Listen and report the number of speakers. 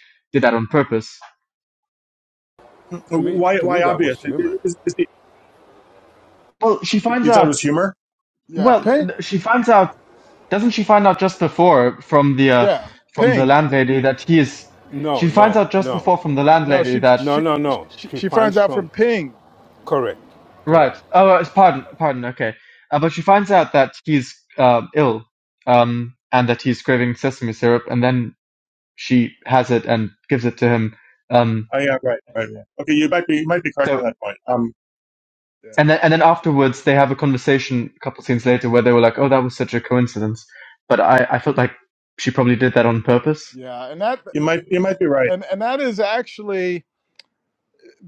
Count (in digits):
4